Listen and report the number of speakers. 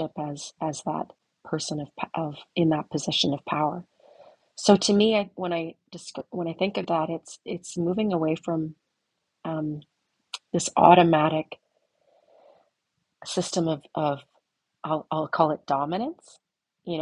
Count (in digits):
1